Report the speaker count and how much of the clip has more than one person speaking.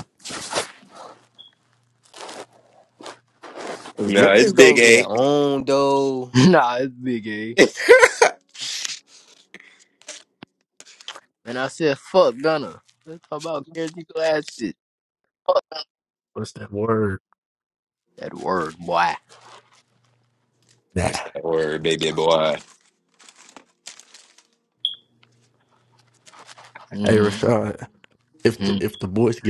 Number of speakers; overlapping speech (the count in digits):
4, about 5%